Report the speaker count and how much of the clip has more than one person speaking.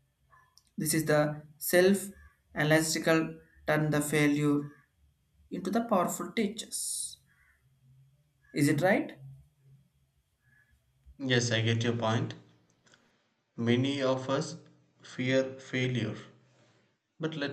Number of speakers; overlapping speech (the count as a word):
two, no overlap